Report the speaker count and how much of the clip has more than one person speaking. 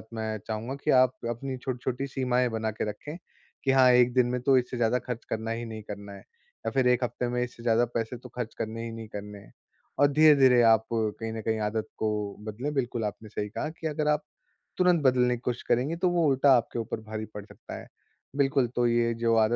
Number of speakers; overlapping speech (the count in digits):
1, no overlap